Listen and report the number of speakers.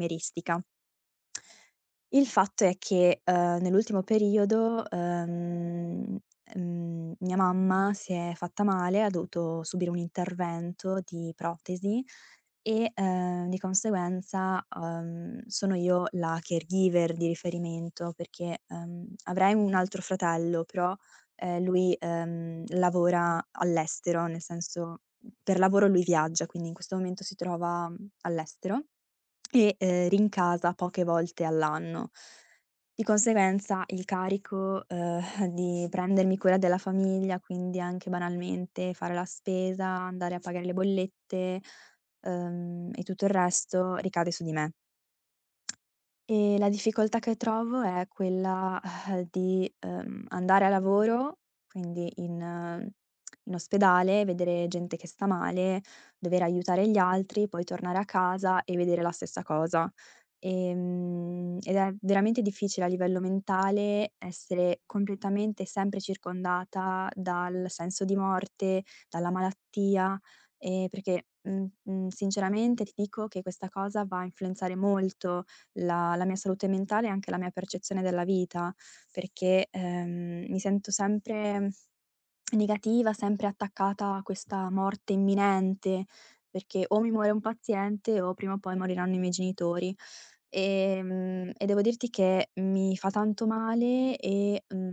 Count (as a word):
one